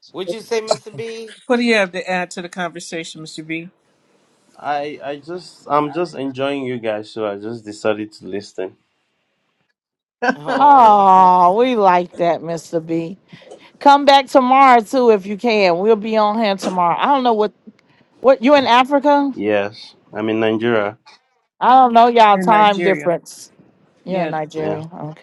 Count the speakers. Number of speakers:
4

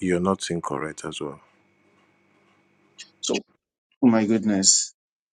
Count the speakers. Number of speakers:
2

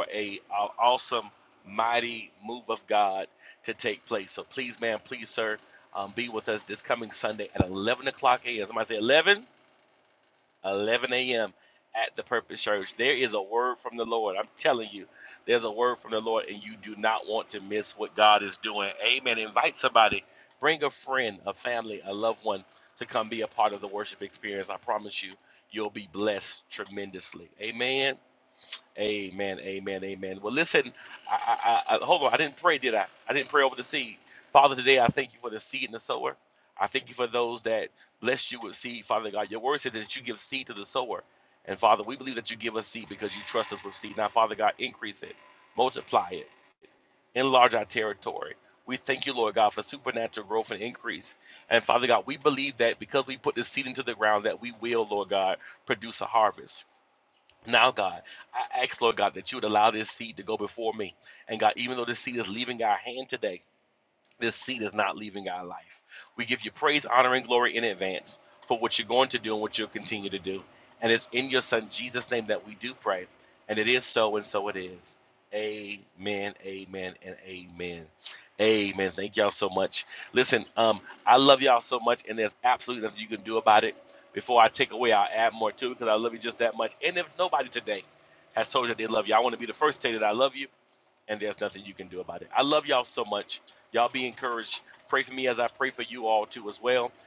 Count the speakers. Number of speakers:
1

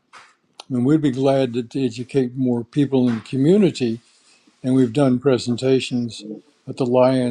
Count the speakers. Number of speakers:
1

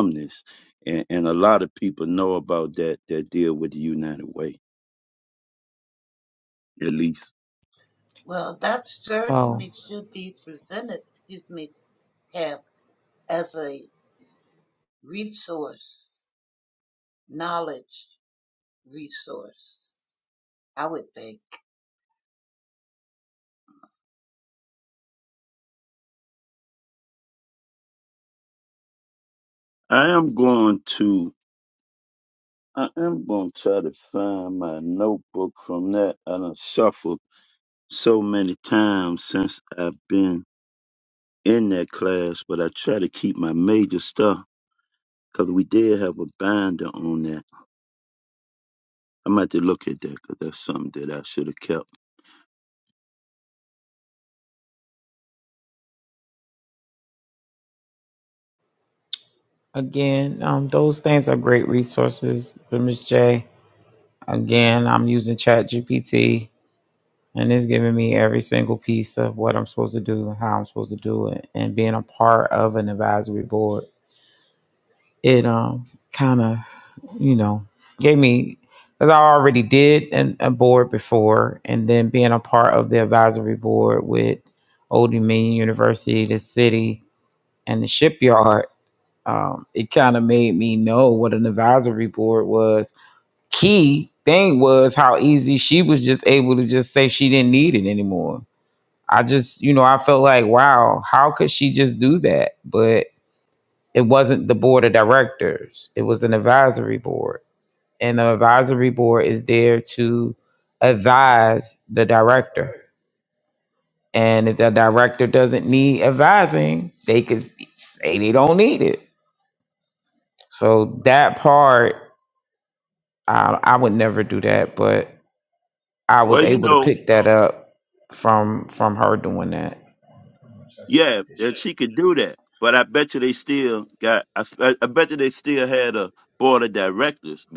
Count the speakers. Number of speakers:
3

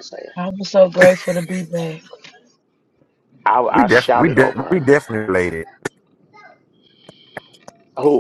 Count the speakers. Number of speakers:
3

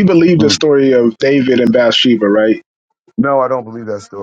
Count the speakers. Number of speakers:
2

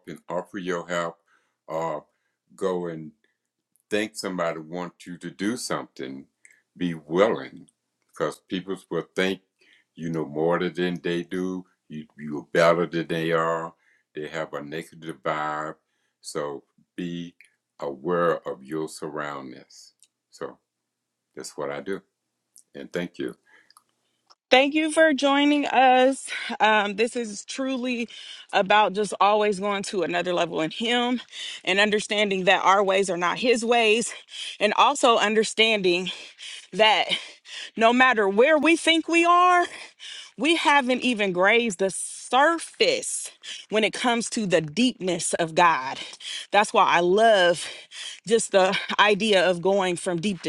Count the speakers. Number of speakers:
2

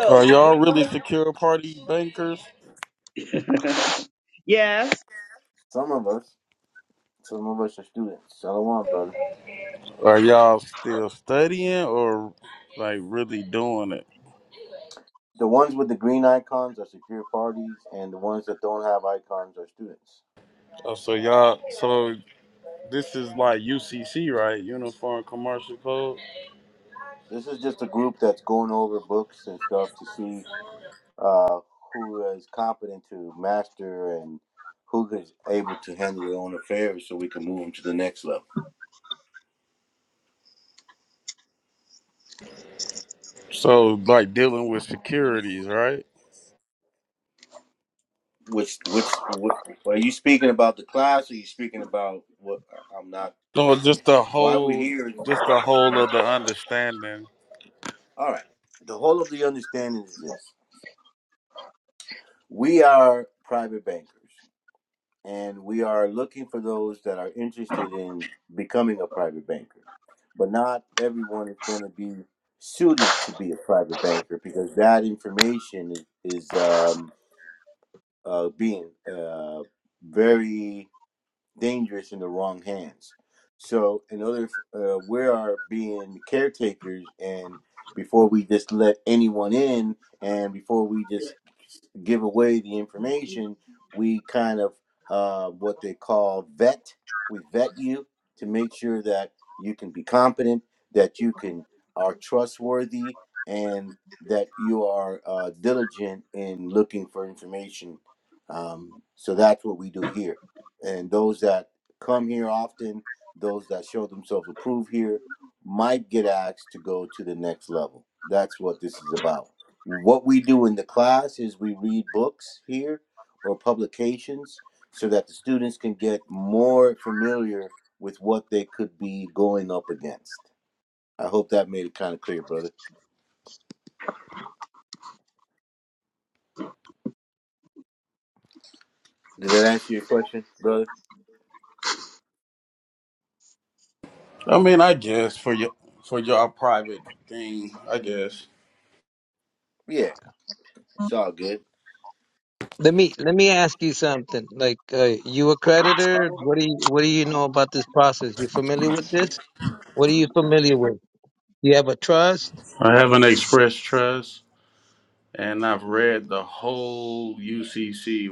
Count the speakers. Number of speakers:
4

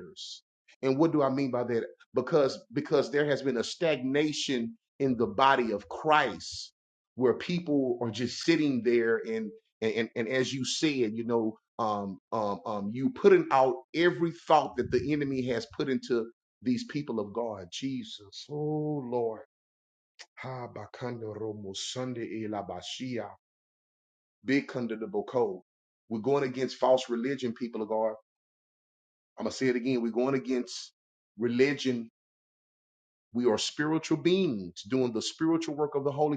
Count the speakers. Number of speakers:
1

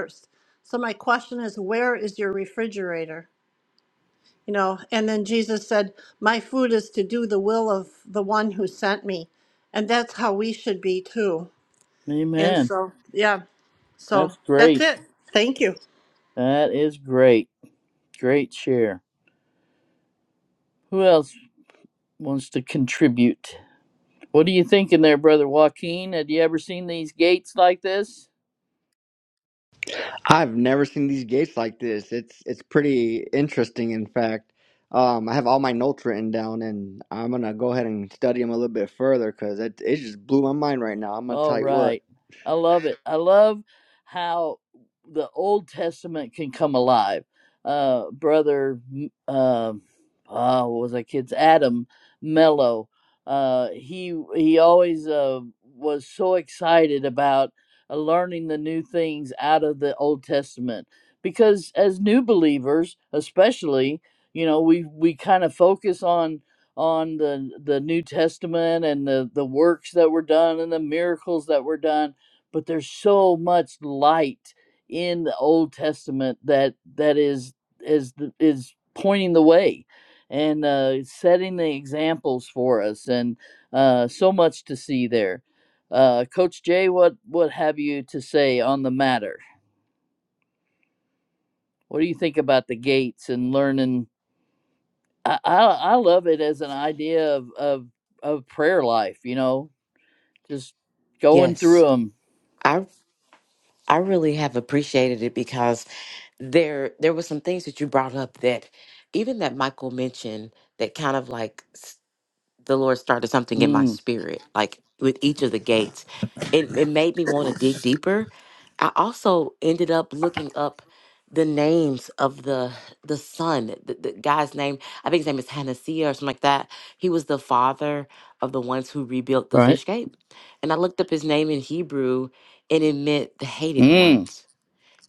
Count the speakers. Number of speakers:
4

